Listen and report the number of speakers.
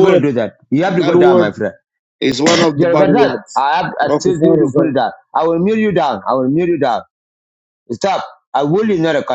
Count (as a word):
two